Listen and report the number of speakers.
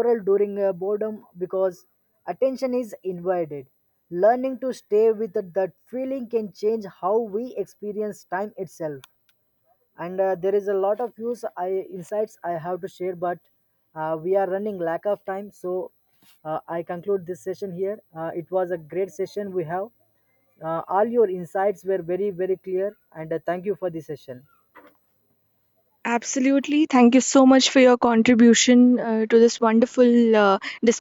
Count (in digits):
2